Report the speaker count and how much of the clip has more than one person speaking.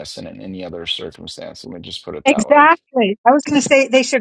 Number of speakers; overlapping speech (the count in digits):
2, about 10%